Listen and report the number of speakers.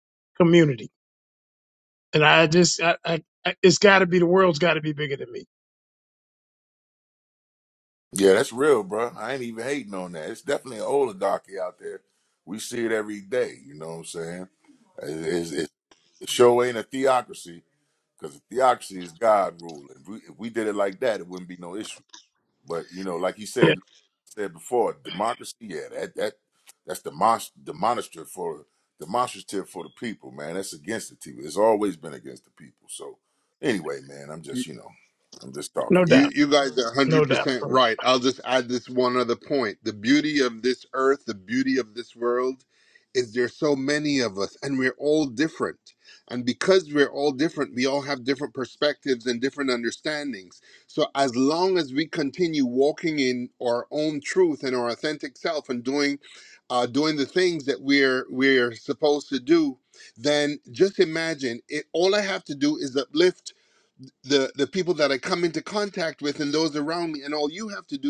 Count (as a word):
three